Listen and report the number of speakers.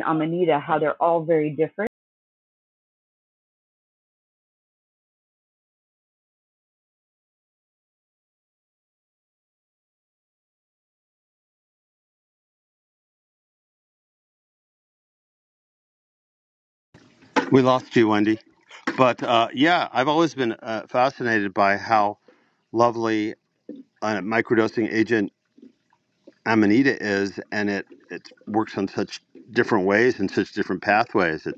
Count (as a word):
two